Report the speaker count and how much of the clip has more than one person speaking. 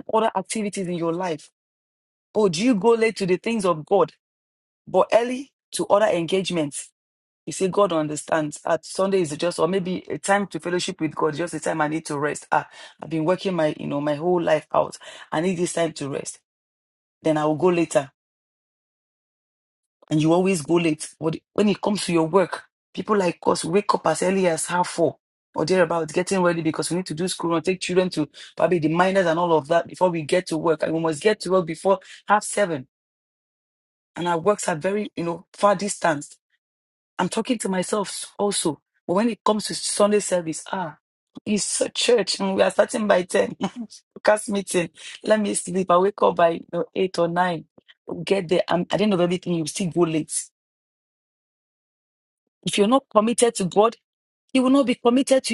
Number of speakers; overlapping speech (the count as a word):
one, no overlap